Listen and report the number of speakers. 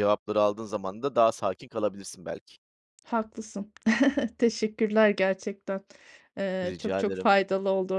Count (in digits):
2